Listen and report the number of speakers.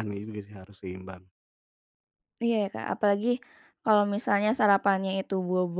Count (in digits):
2